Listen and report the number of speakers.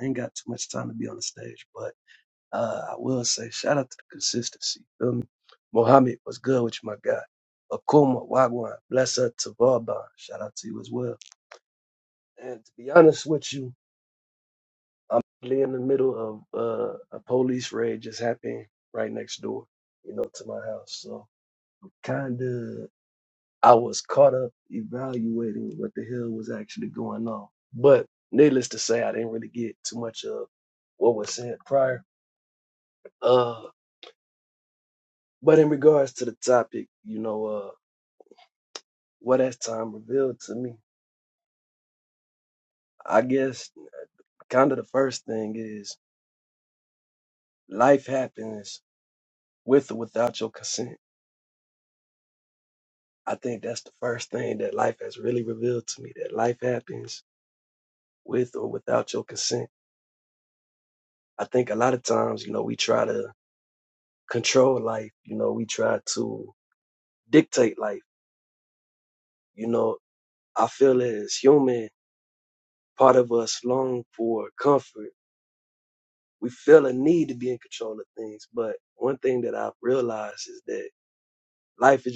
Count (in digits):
1